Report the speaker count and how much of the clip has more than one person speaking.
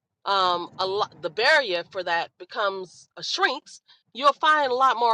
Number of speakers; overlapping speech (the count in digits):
1, no overlap